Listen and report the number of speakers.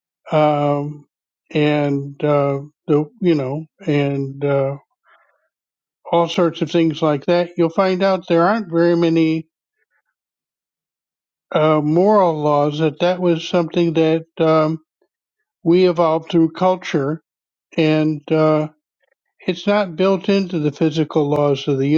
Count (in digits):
1